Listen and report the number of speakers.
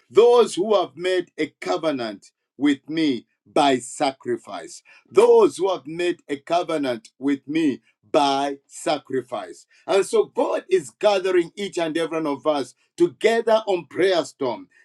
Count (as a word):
one